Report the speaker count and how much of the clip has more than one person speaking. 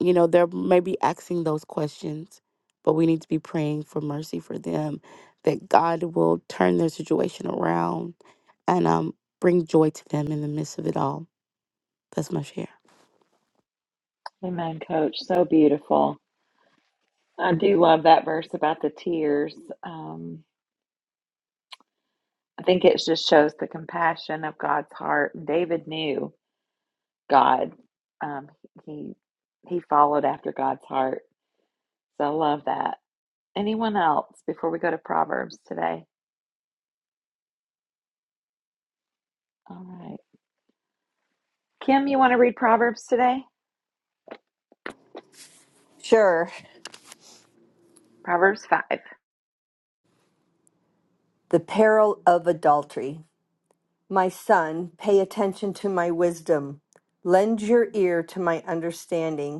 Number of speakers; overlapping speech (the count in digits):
3, no overlap